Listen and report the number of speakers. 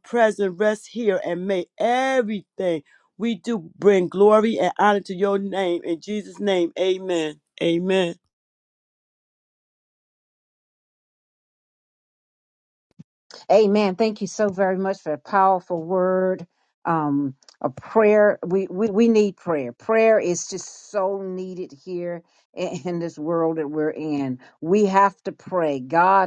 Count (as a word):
two